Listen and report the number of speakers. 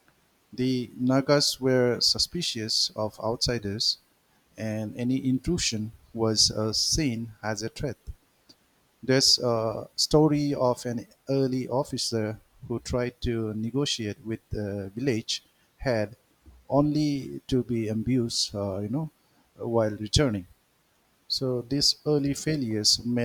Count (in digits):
1